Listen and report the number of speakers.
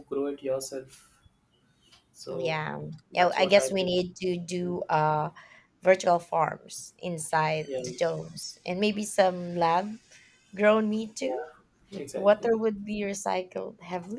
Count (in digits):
2